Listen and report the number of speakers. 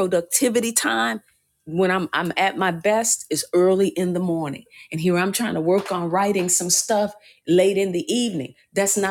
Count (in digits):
1